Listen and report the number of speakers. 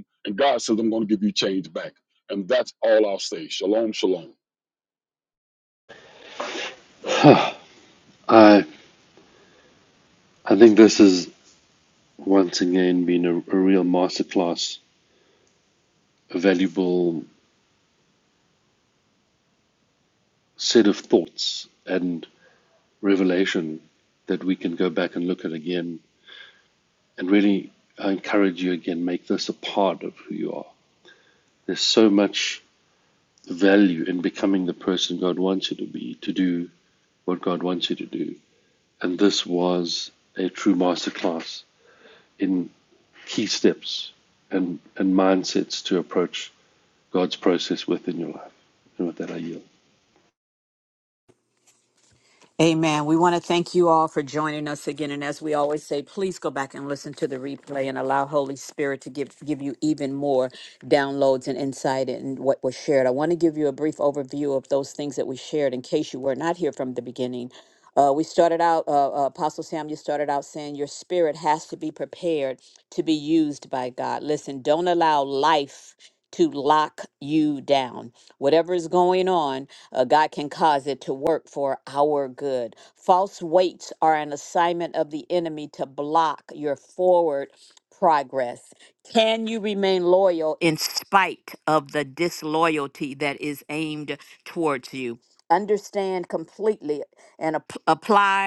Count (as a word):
three